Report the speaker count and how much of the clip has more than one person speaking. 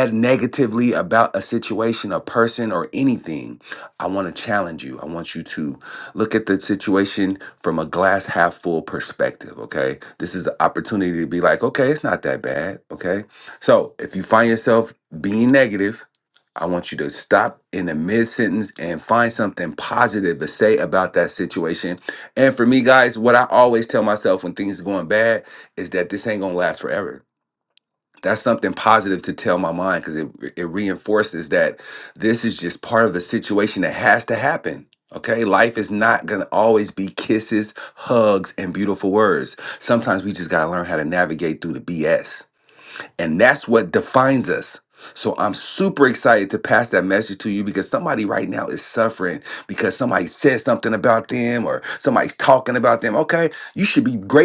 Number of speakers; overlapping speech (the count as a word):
one, no overlap